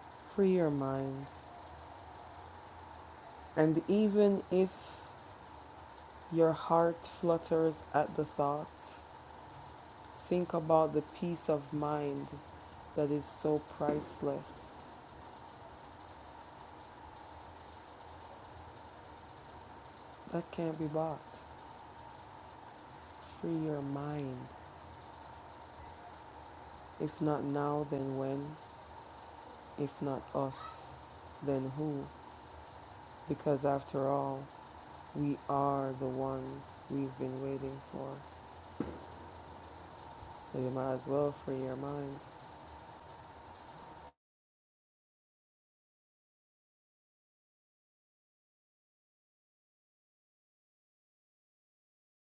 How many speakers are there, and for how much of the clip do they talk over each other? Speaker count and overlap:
1, no overlap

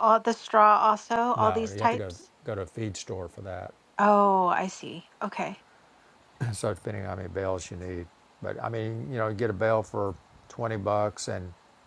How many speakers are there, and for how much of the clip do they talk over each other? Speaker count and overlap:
2, about 5%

